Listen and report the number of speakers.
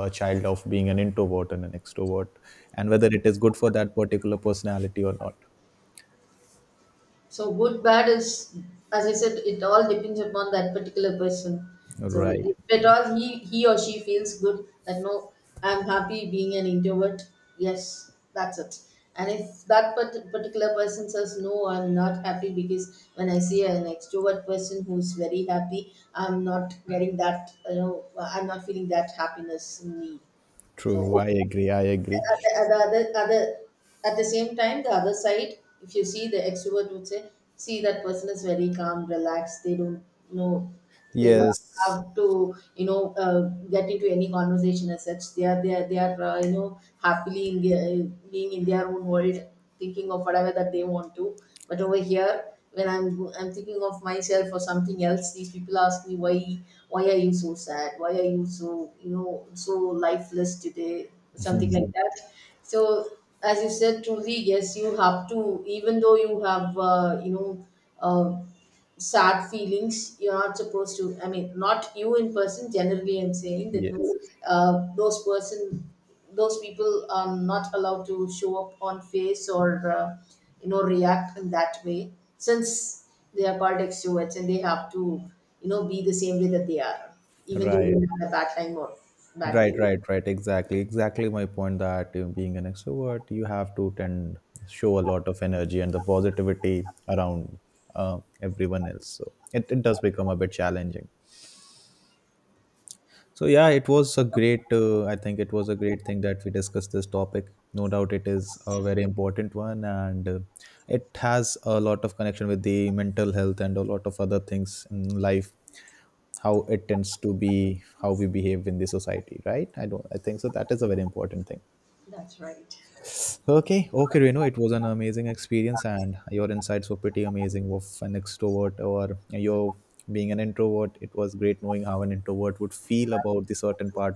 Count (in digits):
2